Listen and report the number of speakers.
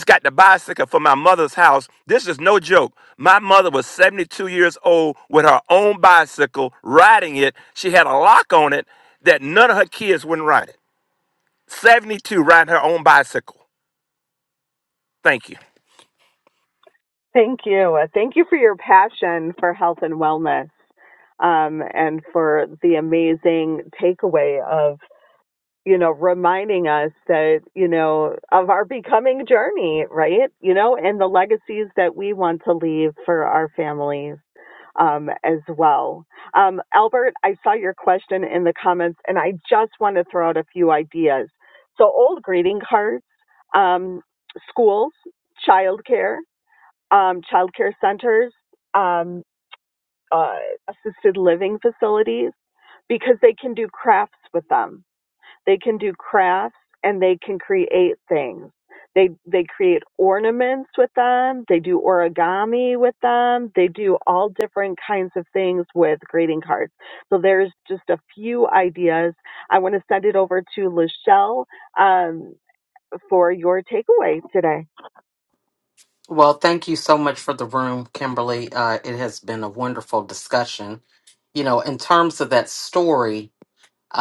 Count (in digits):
3